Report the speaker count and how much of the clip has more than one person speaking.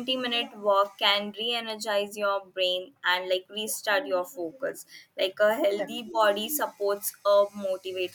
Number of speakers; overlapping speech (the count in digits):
1, no overlap